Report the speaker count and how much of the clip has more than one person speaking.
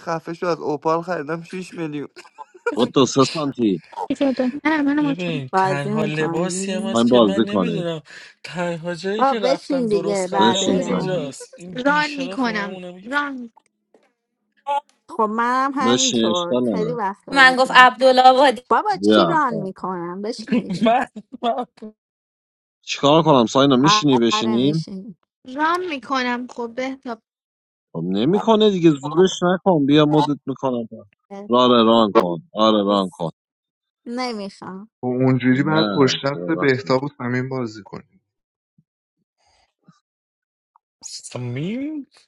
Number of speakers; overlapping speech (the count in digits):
7, about 23%